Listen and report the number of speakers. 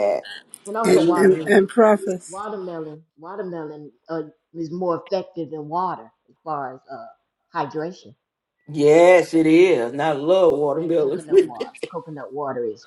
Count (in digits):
3